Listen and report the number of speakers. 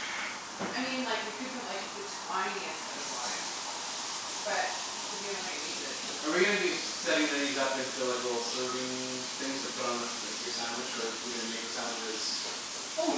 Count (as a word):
two